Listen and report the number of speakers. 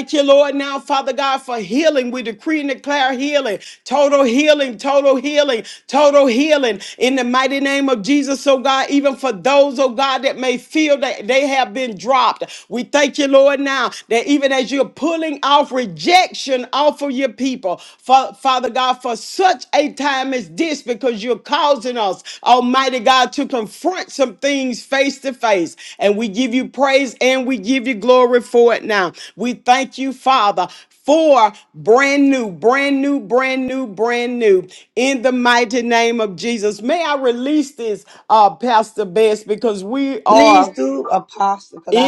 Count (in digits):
2